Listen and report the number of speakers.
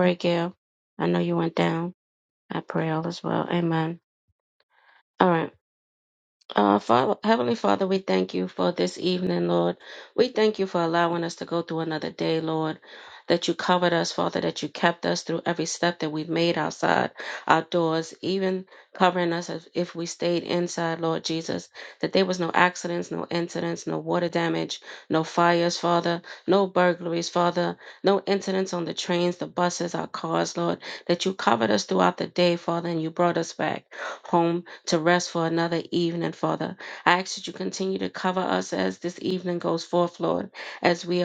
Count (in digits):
1